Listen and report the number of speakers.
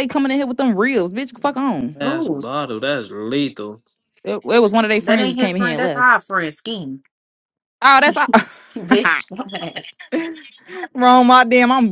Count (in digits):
3